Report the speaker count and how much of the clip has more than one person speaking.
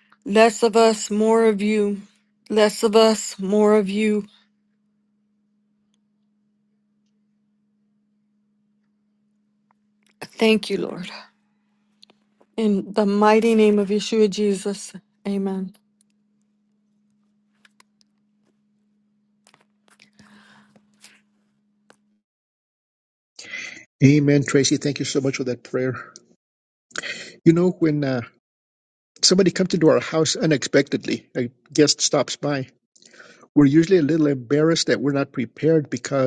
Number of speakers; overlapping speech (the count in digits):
2, no overlap